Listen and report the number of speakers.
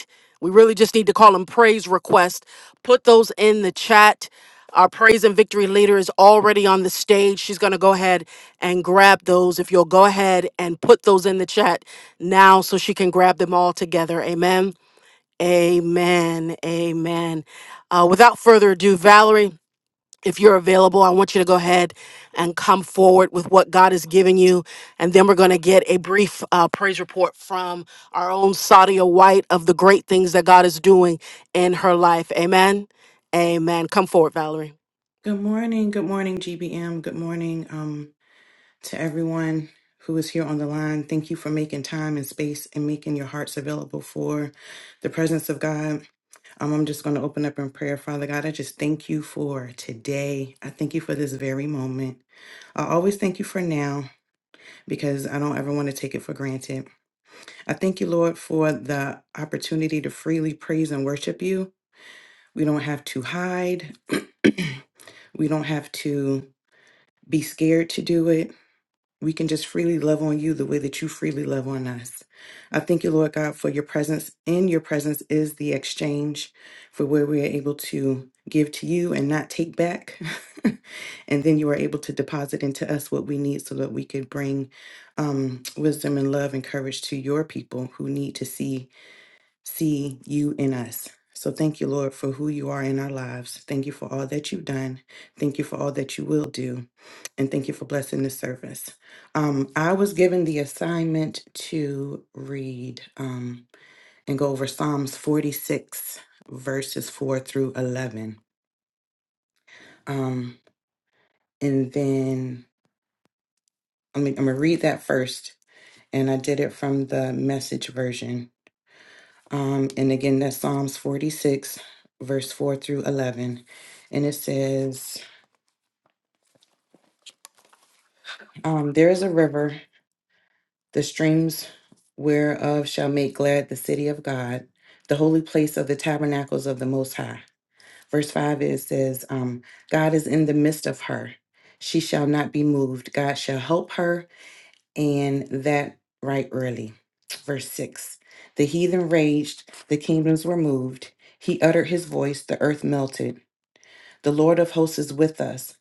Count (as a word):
two